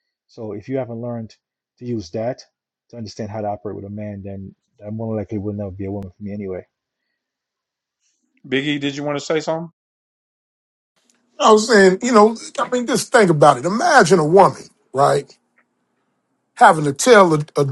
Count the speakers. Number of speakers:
three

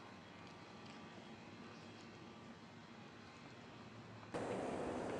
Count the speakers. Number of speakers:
zero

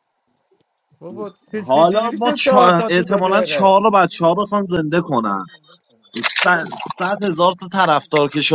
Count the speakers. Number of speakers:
two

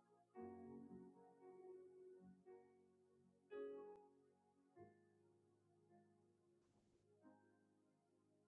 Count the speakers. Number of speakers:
zero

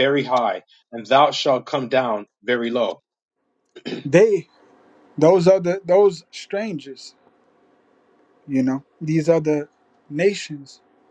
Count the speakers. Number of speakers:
two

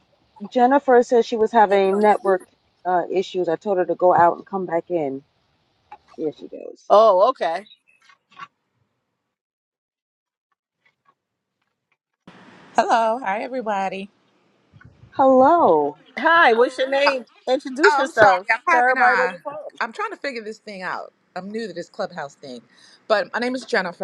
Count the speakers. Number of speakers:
three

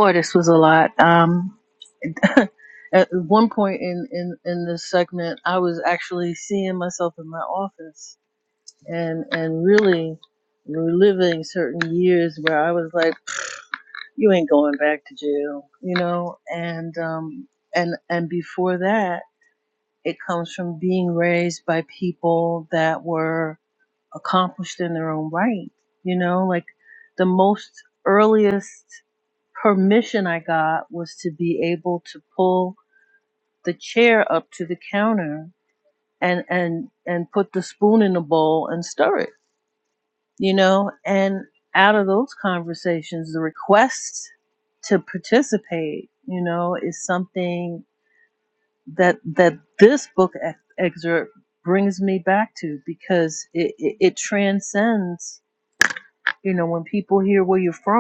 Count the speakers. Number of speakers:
one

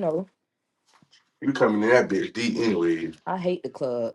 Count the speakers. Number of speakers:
two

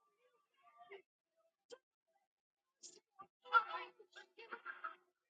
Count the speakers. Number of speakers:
zero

